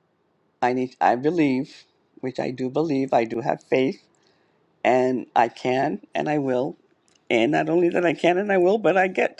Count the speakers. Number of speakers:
1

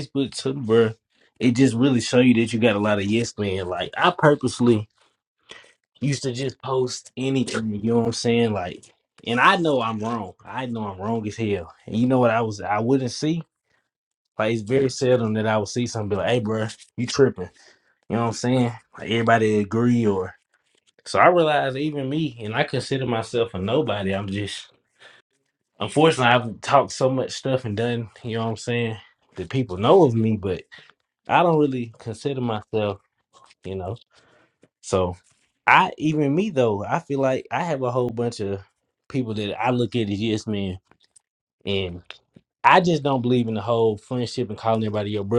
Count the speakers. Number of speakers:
1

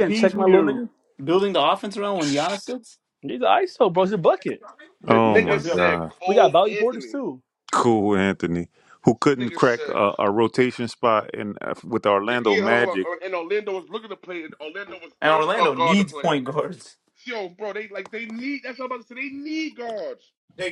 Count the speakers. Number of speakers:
4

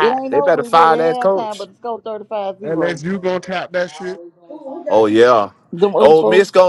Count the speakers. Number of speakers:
3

